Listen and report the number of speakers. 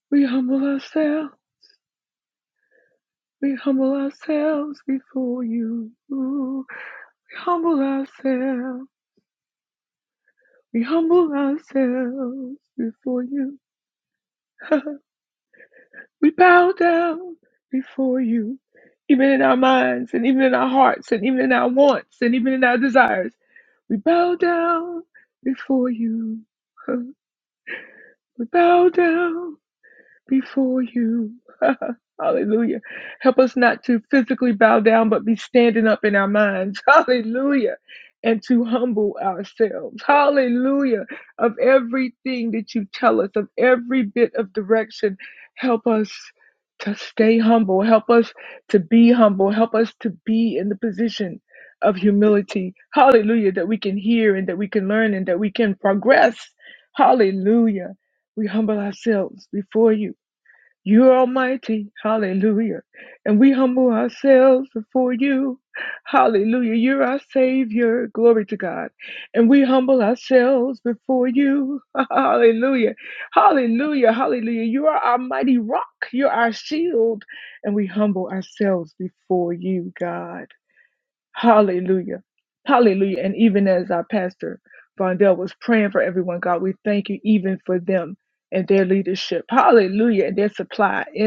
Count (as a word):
one